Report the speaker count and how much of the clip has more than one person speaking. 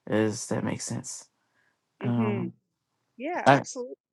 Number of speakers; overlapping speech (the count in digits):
2, about 16%